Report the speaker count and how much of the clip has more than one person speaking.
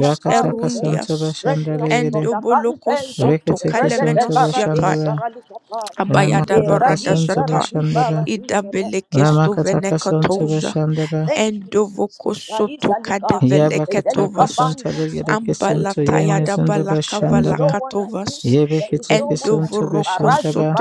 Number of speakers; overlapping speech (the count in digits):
3, about 84%